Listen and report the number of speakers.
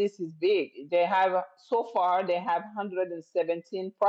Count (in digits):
1